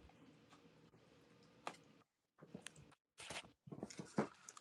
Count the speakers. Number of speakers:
0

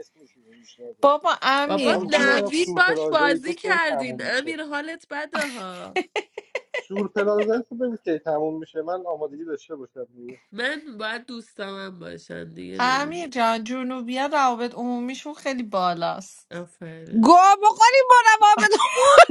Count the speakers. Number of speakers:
4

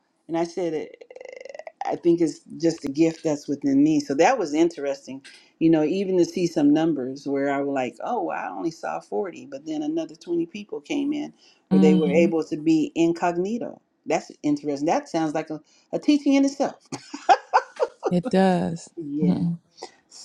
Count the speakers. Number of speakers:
2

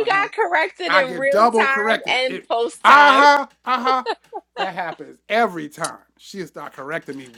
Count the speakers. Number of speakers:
2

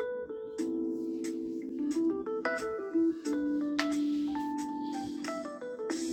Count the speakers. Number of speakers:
0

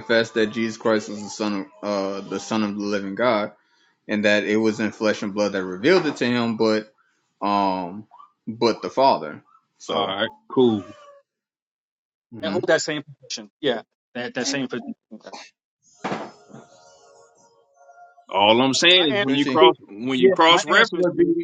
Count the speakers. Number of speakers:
3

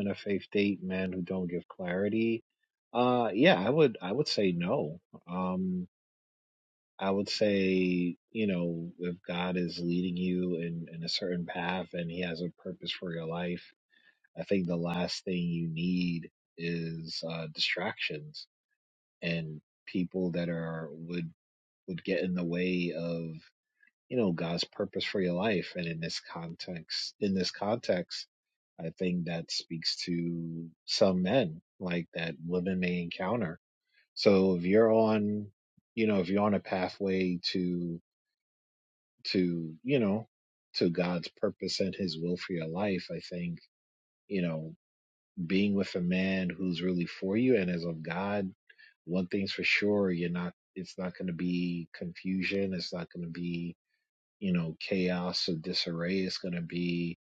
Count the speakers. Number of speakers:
1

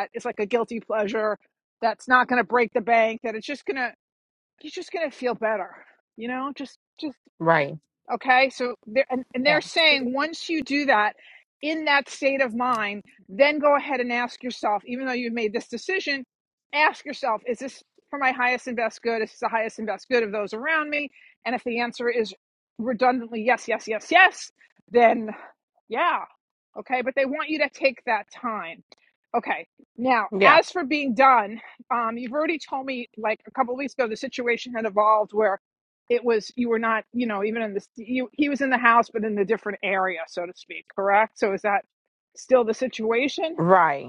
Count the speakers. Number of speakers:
2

